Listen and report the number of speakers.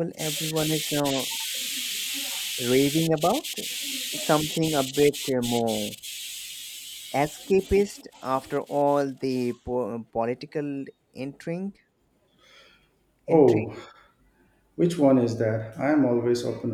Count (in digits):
2